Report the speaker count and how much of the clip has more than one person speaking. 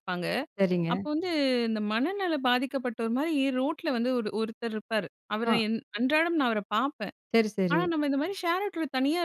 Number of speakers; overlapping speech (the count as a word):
two, about 6%